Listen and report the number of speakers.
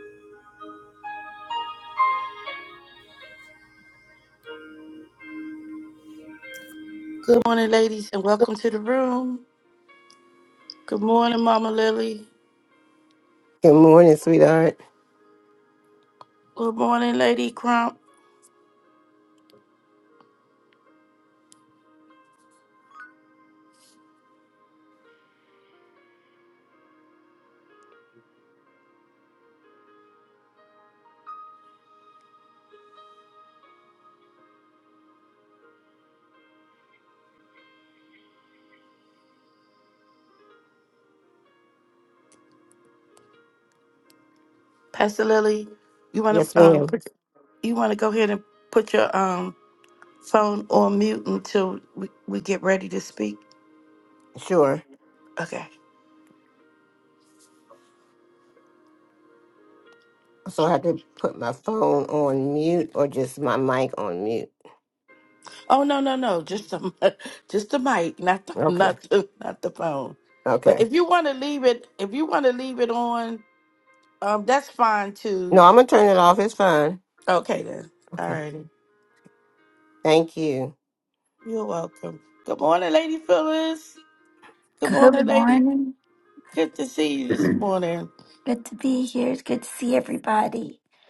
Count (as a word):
three